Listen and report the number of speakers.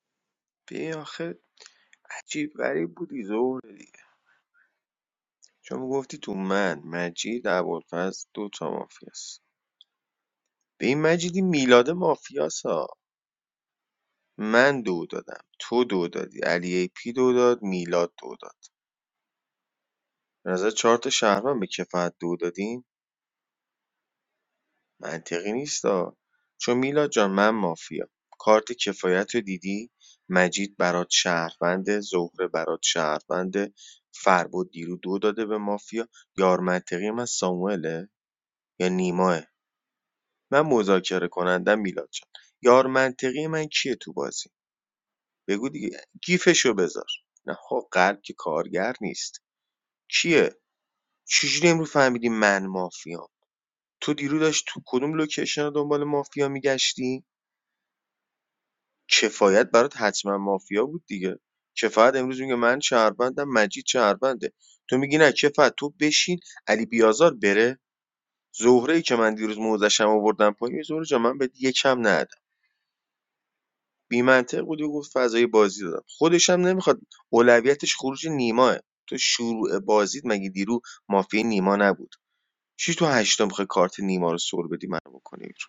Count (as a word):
one